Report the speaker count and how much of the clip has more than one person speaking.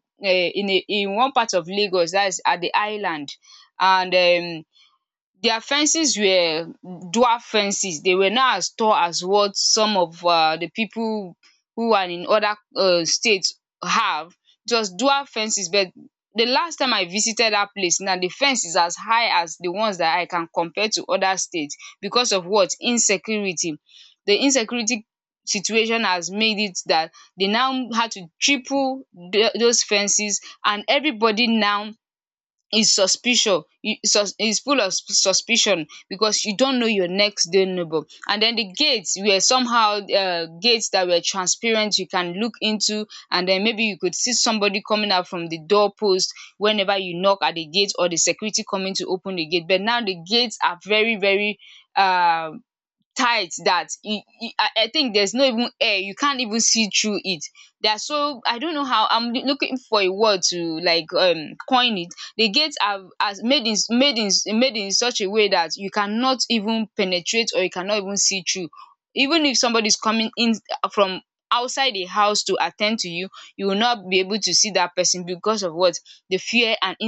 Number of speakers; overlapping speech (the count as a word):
one, no overlap